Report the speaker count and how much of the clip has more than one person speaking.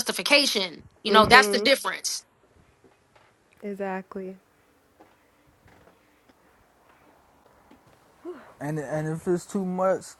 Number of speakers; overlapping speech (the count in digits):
3, about 6%